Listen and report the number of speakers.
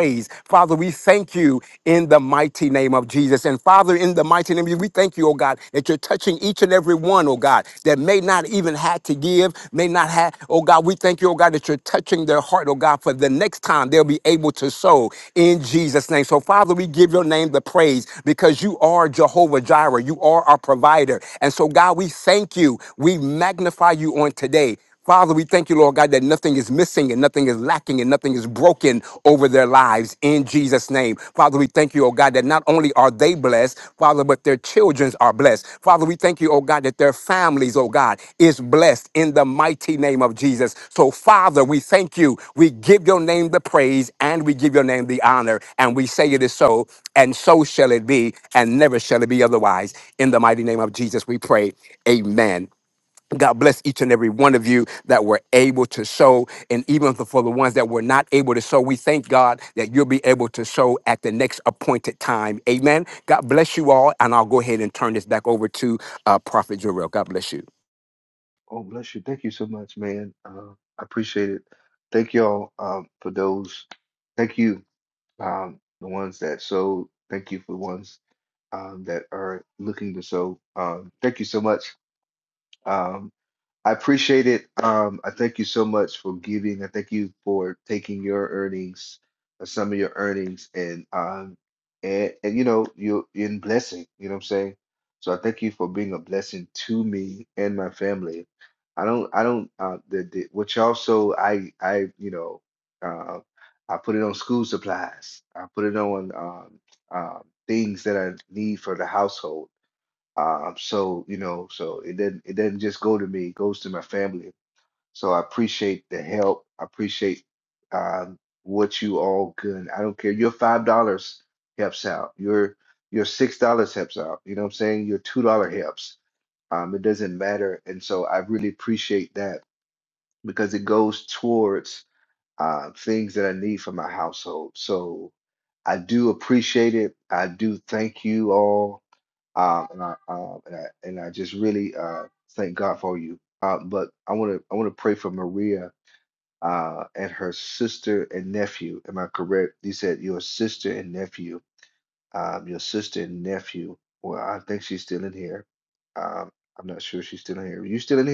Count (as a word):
two